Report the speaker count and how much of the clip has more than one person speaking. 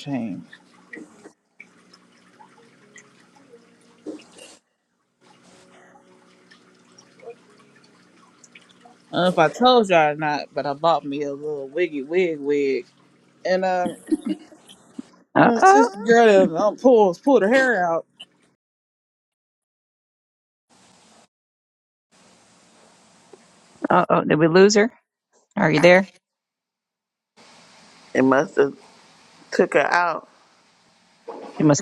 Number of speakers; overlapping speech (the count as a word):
three, about 2%